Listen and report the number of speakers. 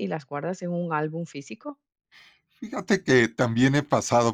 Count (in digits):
2